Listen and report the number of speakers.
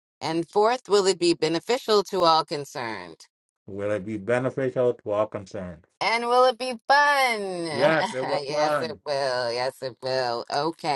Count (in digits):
2